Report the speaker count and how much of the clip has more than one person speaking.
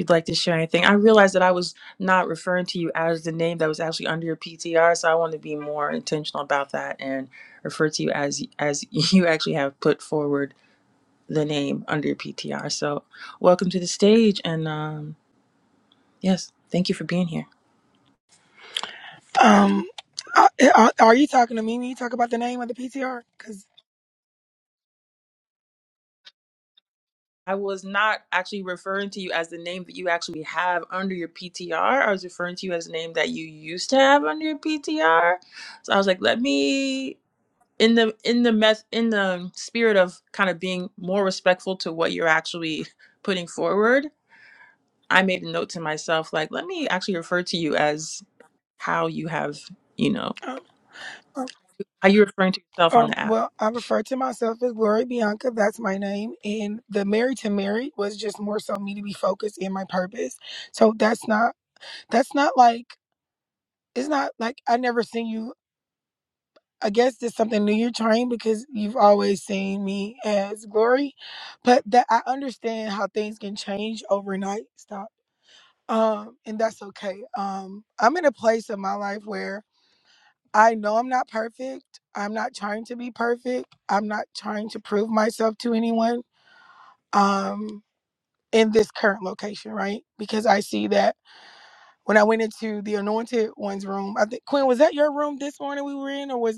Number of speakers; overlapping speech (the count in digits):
2, under 1%